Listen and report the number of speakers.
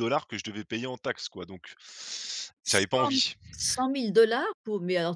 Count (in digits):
2